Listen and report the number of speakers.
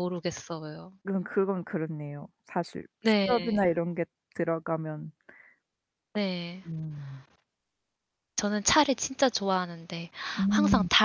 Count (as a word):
two